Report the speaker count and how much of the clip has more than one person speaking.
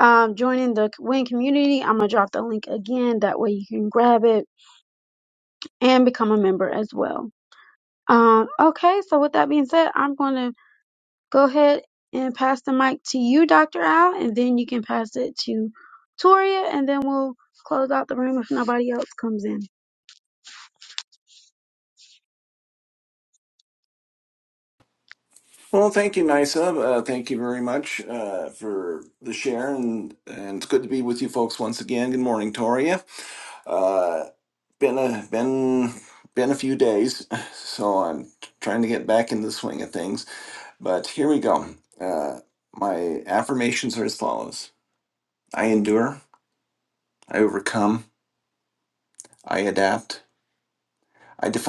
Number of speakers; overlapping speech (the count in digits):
2, no overlap